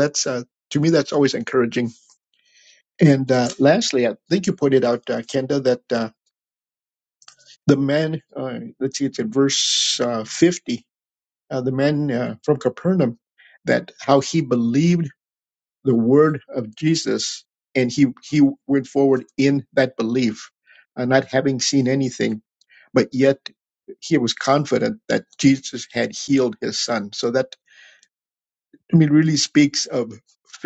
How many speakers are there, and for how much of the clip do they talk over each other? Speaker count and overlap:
1, no overlap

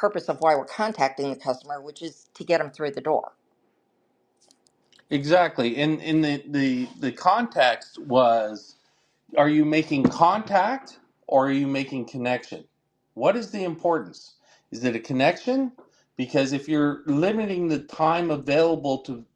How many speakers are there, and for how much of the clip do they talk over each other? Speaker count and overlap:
2, no overlap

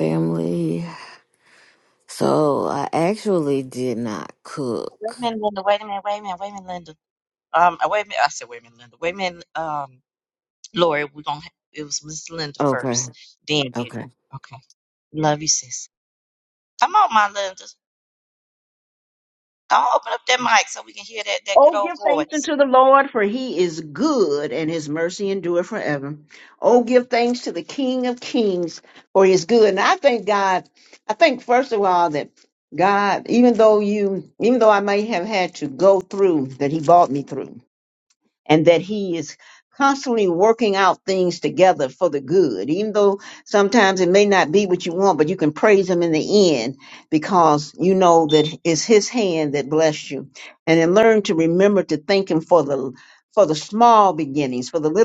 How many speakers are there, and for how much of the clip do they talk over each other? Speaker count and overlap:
3, about 3%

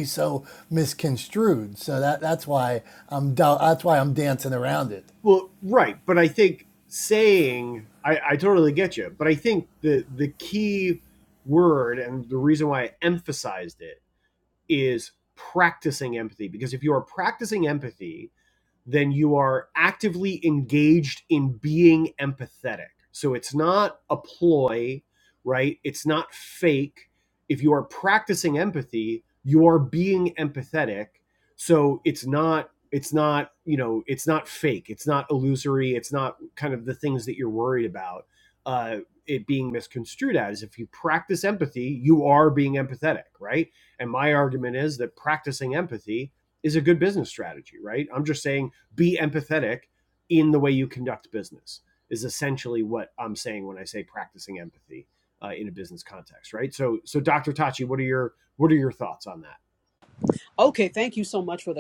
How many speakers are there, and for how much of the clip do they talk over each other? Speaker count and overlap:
3, no overlap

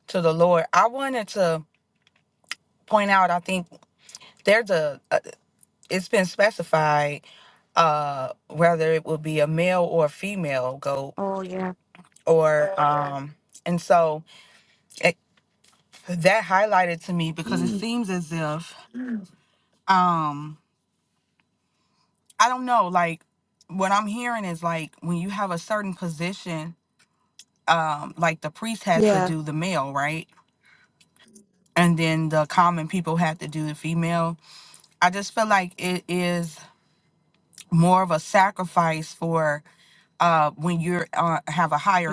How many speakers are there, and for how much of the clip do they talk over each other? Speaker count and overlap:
2, about 1%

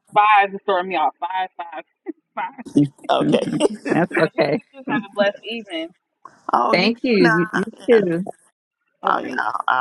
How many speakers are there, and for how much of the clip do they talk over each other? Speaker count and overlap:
3, about 24%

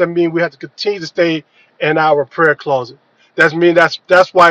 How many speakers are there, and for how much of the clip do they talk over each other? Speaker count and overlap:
1, no overlap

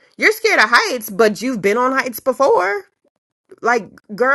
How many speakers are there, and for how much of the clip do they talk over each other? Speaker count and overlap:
1, no overlap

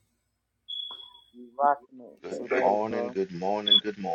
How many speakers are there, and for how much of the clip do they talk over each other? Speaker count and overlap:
2, about 22%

